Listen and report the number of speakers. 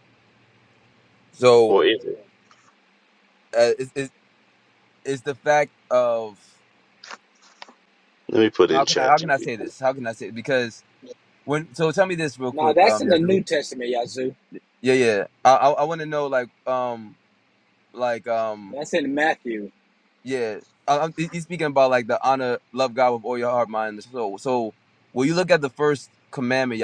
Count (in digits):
3